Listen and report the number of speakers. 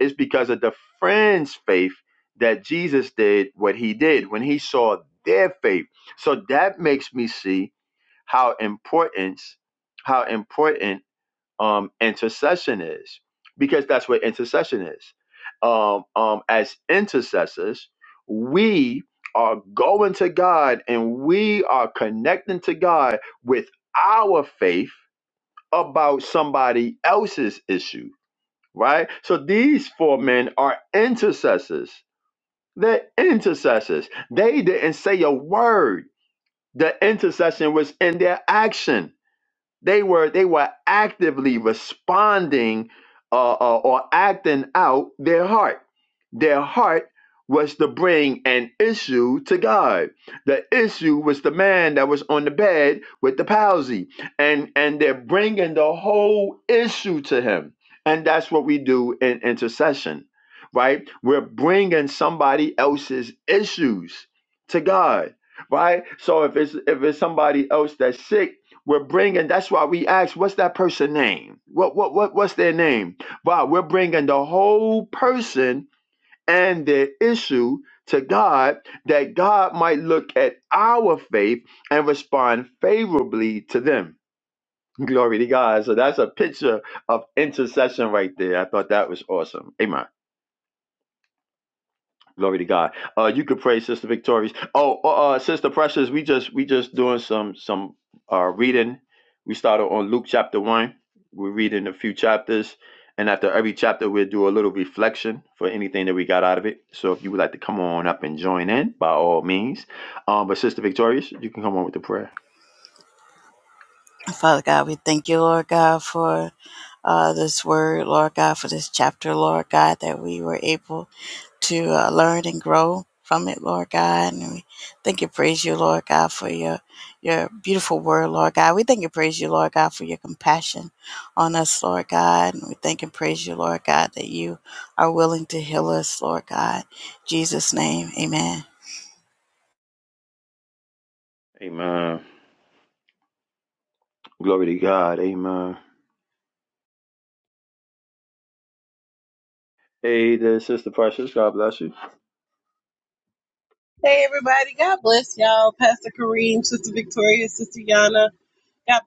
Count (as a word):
three